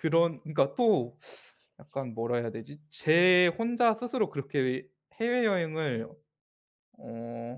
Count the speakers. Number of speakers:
one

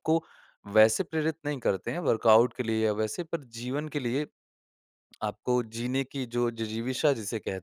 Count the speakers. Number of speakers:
one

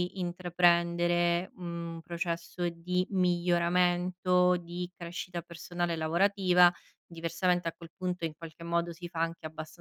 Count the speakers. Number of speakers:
one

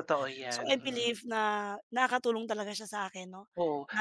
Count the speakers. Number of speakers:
two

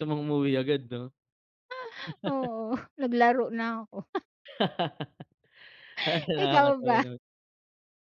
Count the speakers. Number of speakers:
two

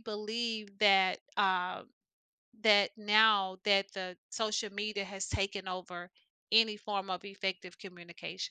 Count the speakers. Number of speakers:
one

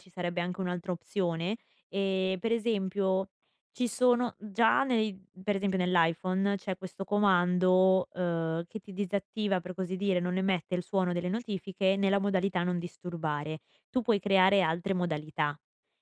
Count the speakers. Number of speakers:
one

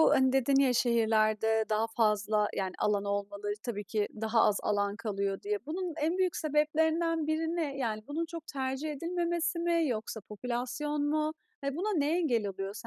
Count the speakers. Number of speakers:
one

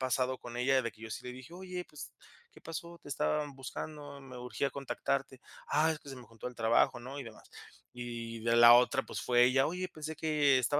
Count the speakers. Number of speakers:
one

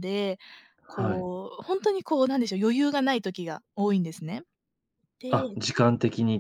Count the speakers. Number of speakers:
two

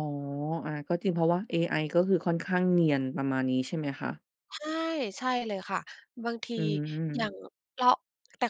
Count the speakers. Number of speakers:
two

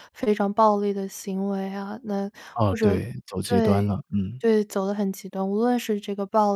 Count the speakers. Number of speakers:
two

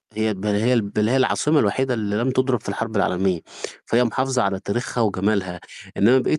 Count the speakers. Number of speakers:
one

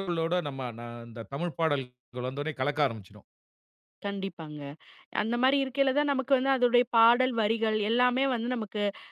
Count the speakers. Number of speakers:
two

